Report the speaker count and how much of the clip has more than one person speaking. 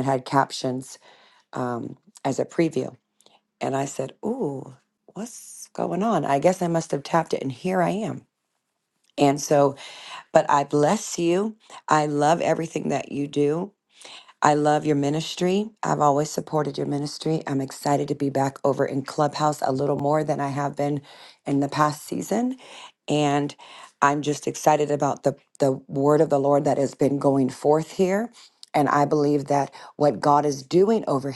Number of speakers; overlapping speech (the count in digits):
1, no overlap